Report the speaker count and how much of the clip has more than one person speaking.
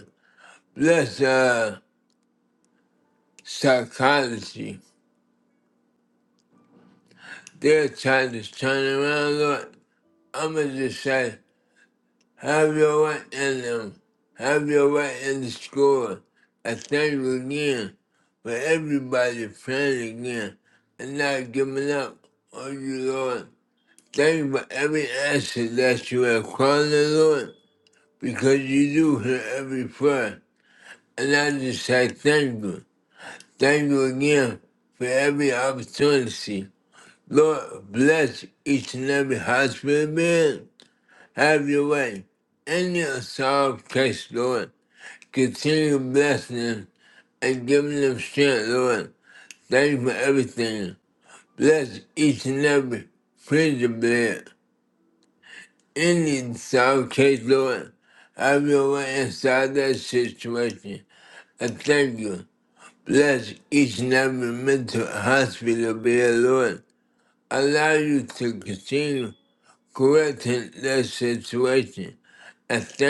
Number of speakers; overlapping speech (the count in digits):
1, no overlap